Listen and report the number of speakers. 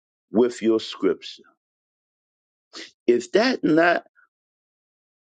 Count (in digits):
1